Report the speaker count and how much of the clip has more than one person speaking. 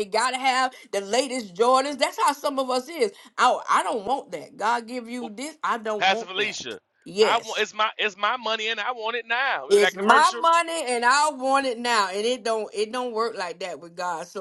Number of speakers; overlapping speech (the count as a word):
two, about 11%